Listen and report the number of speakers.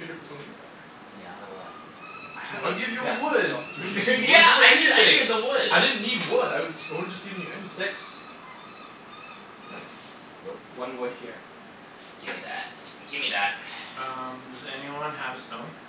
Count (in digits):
4